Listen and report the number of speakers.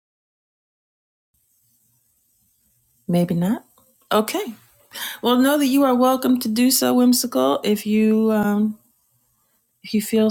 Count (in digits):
1